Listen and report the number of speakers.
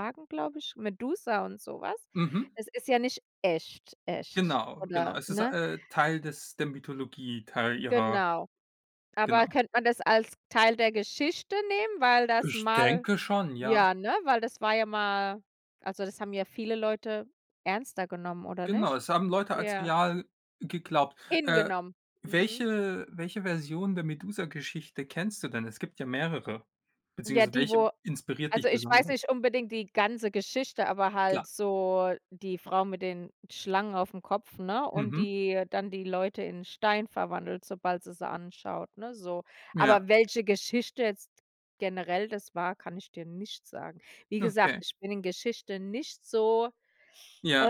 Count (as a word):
two